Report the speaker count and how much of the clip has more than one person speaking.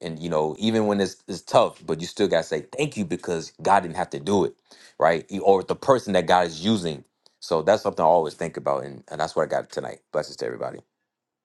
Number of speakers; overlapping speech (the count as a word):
one, no overlap